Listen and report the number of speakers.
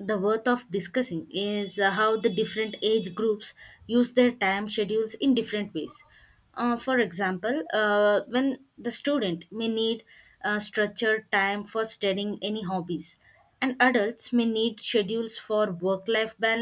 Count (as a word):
one